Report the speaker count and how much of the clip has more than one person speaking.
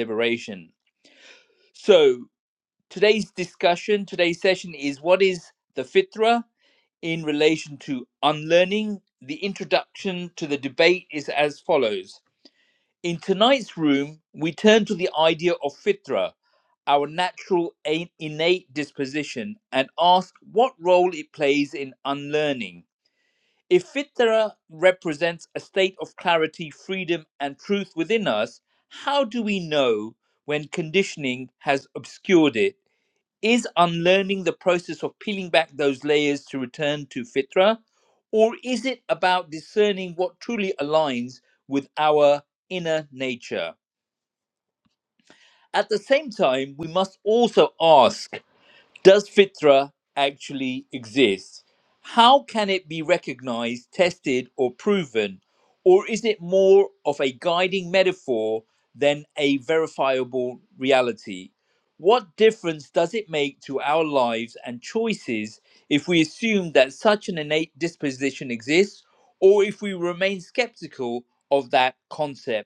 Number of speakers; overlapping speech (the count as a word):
one, no overlap